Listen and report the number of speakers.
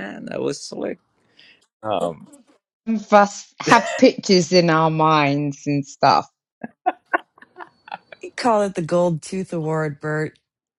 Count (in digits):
3